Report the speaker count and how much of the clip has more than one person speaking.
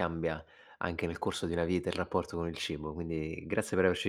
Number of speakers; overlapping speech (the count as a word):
one, no overlap